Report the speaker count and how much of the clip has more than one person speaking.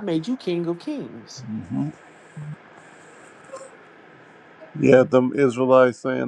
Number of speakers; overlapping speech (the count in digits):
2, no overlap